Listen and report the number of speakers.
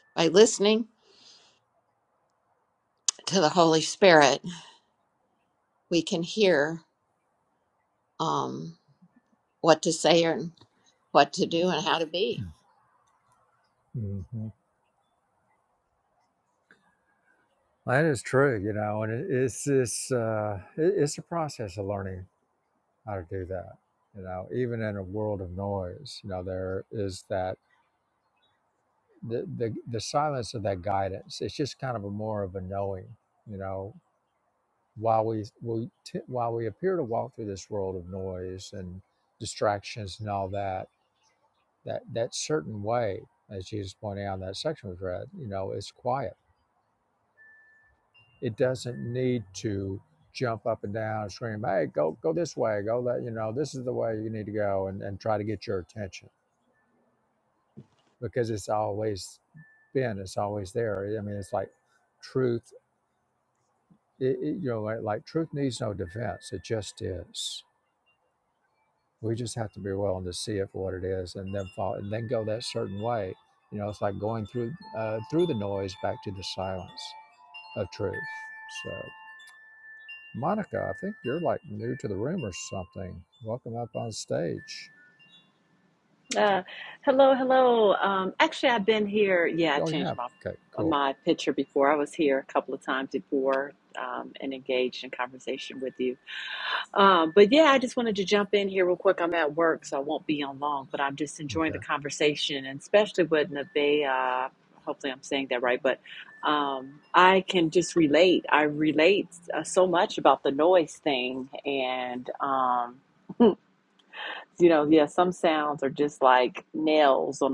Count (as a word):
three